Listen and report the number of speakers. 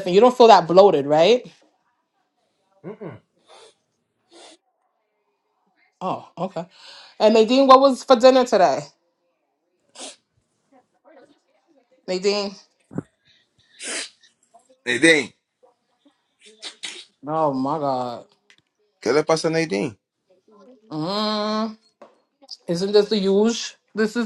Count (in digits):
2